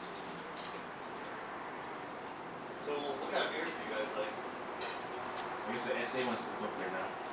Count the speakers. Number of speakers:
2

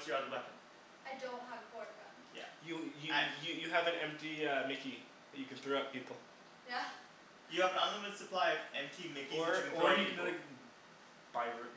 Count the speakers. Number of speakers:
3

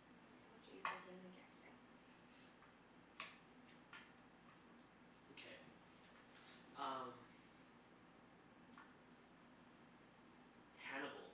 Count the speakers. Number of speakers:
2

